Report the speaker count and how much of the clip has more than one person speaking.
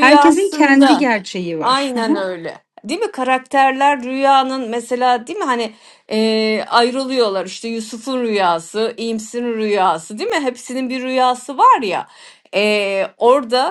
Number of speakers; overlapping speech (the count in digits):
2, about 9%